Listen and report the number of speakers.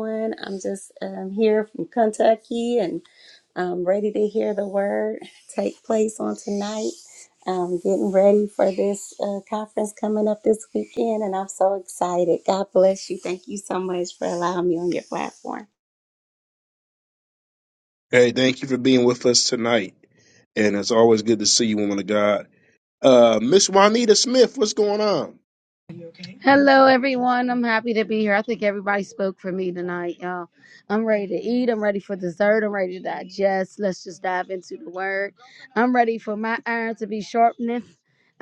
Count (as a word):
three